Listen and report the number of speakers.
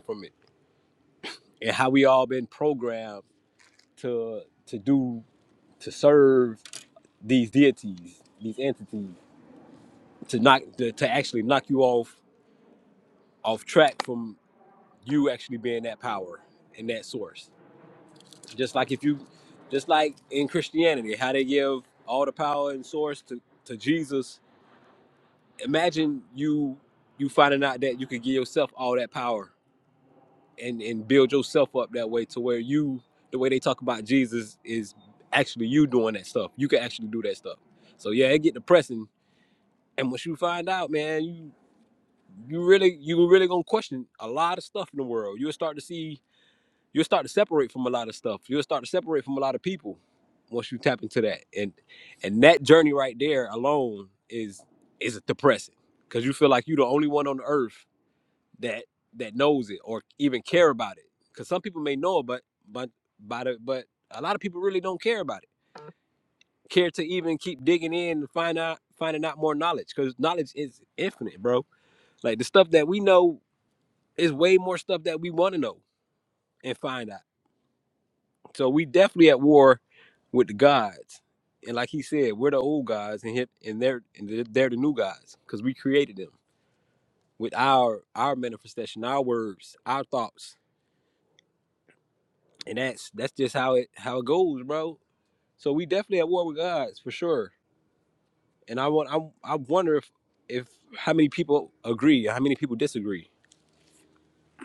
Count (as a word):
one